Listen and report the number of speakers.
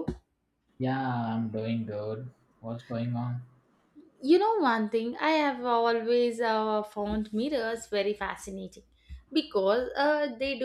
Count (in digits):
2